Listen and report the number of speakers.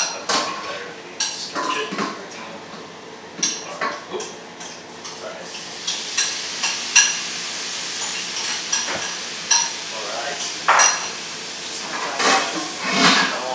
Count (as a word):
two